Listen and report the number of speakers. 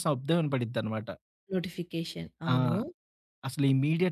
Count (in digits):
2